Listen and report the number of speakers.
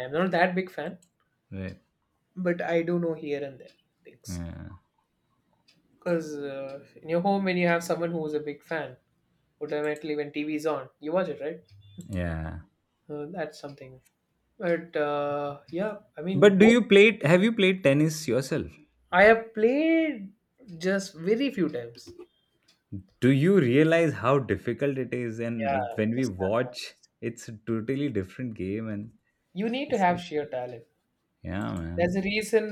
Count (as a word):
two